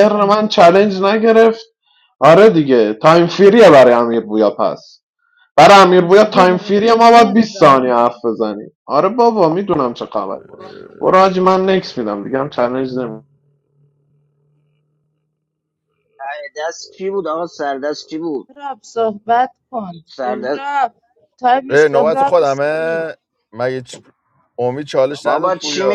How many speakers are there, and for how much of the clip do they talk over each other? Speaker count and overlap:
4, about 16%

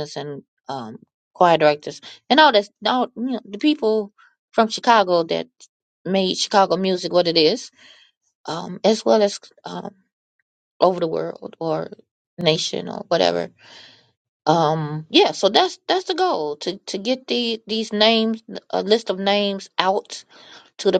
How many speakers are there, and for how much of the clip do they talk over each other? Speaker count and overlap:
1, no overlap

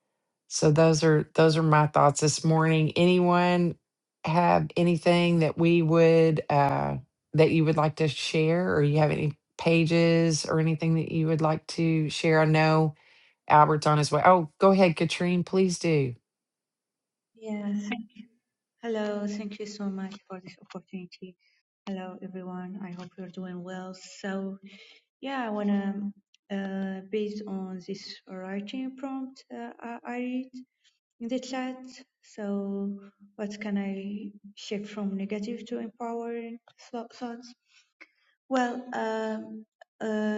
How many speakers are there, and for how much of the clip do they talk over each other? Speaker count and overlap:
2, no overlap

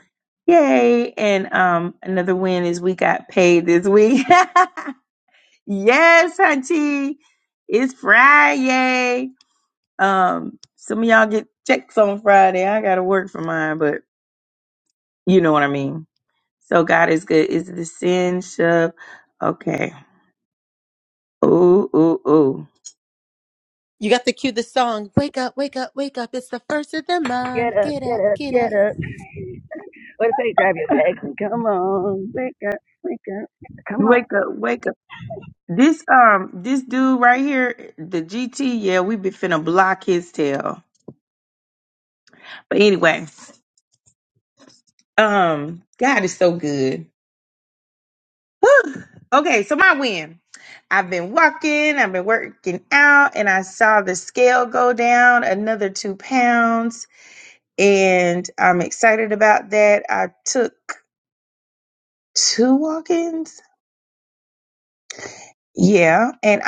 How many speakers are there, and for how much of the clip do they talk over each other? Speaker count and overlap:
3, about 2%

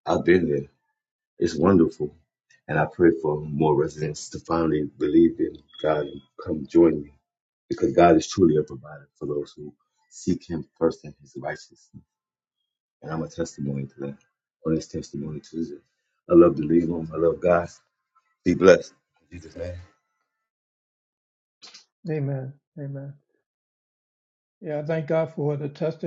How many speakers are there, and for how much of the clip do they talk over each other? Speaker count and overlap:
2, no overlap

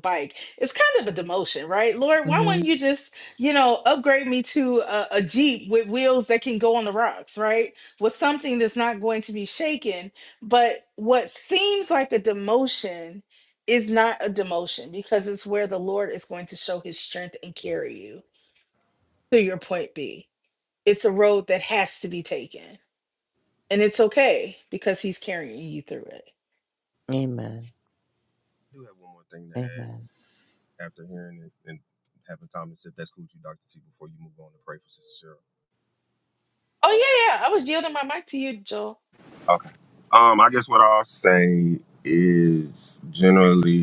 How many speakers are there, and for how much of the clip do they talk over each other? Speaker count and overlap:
3, about 1%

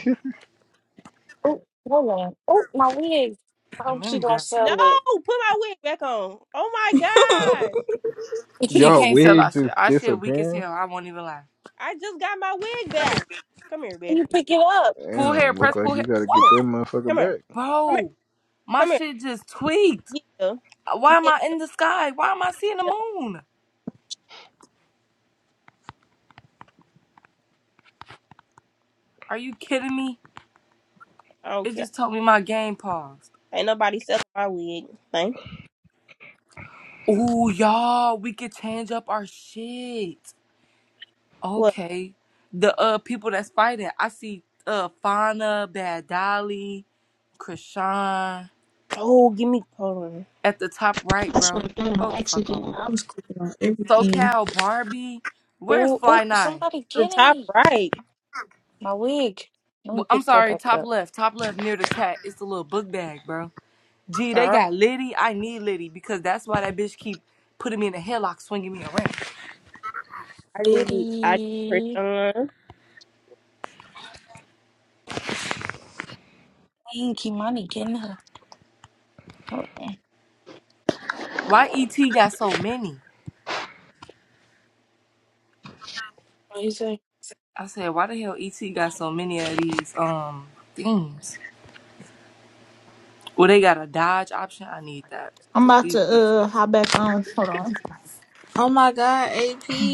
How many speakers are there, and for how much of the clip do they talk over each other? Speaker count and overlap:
6, about 10%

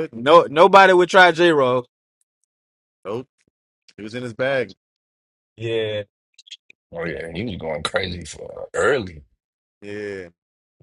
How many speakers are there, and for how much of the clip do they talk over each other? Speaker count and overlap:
3, no overlap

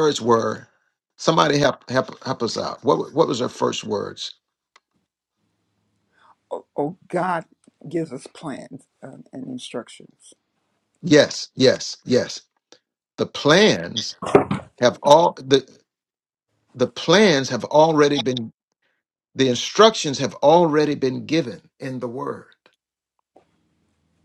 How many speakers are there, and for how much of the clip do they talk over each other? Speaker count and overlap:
2, no overlap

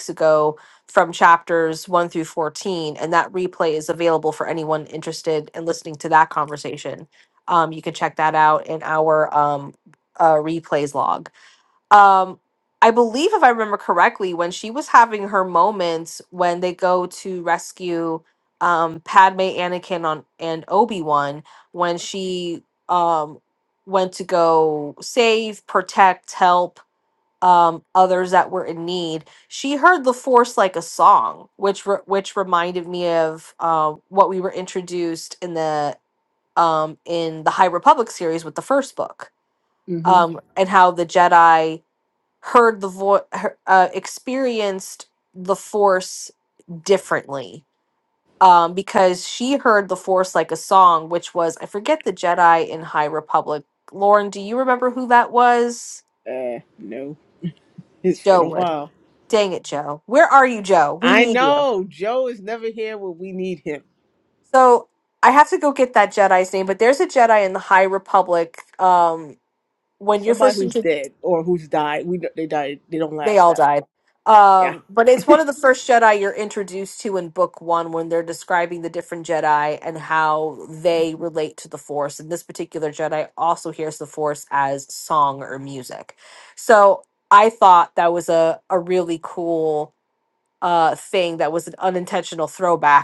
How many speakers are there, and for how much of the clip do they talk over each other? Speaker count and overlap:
2, about 3%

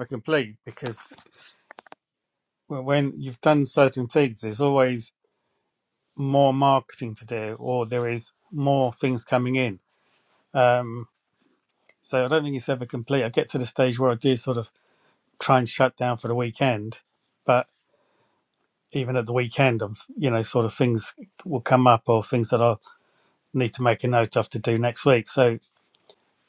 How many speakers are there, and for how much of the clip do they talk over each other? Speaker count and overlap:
1, no overlap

